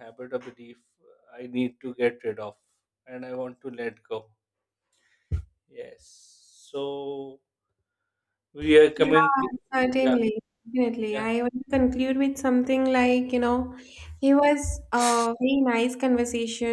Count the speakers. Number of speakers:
2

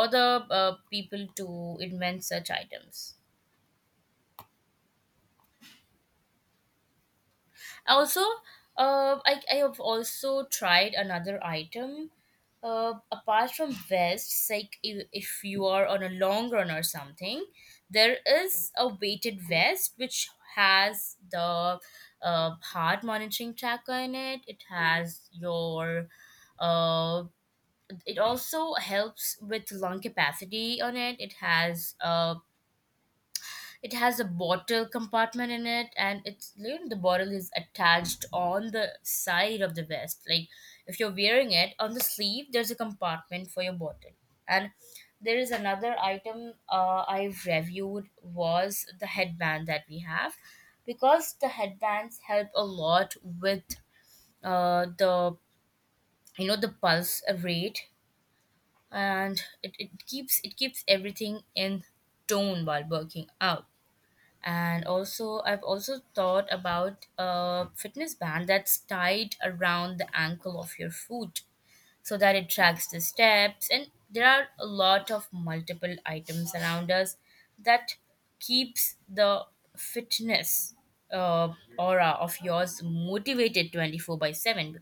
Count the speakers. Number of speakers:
1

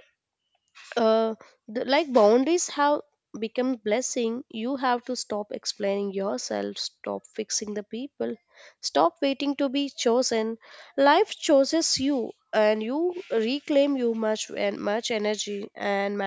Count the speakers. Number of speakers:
1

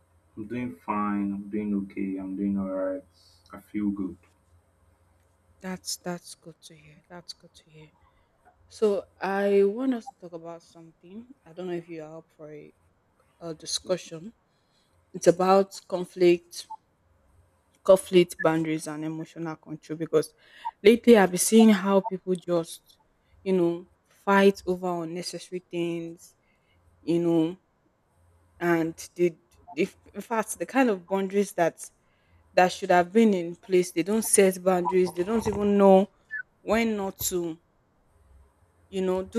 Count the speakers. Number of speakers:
2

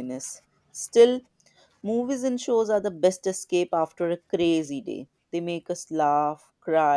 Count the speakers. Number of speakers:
1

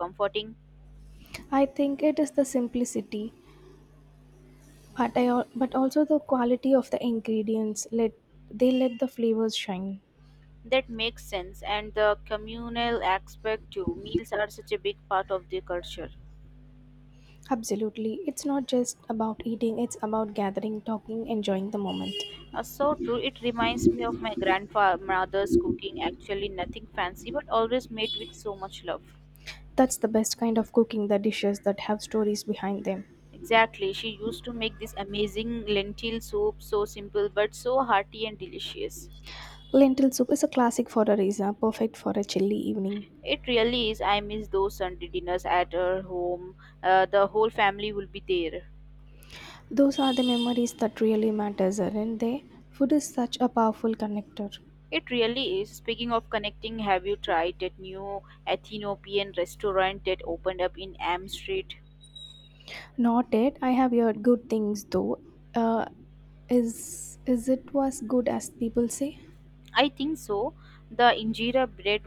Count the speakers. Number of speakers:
2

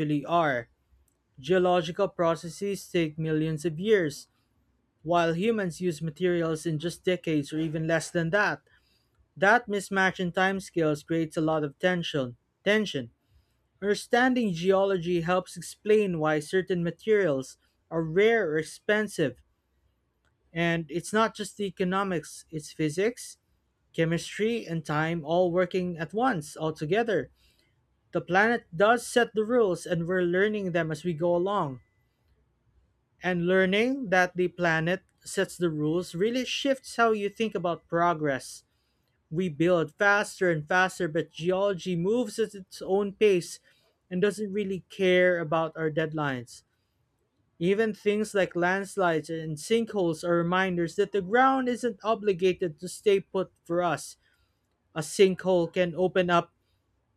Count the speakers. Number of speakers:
1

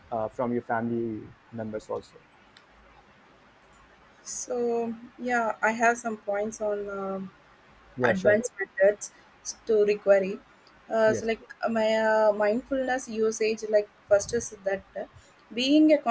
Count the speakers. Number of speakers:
2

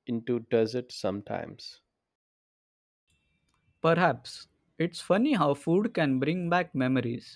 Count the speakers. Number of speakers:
2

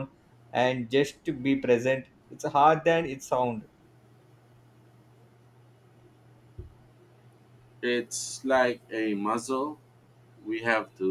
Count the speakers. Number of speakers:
2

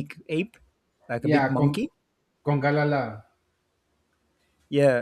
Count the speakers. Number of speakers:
2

